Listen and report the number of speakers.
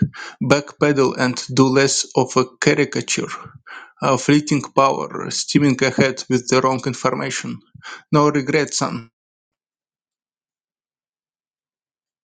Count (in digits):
1